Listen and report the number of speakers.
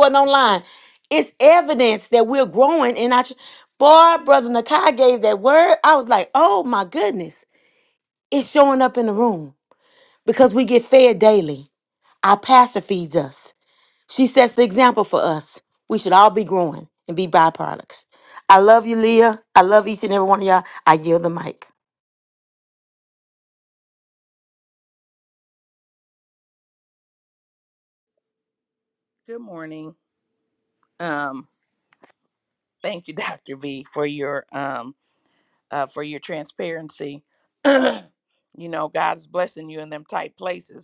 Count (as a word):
two